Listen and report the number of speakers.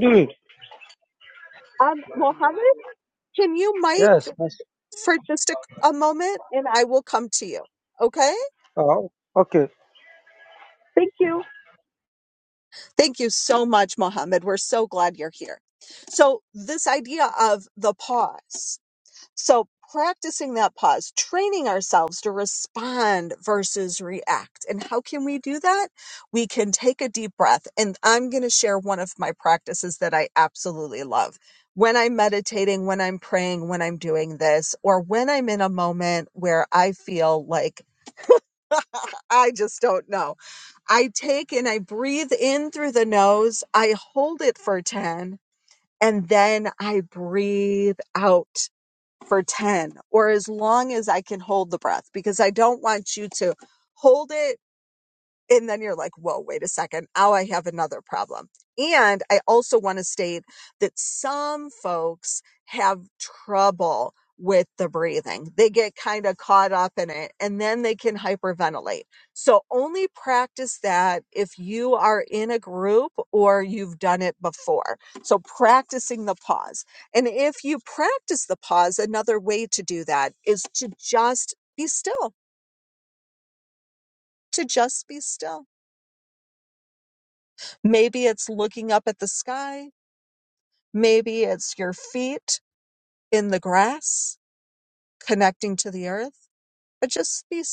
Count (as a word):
two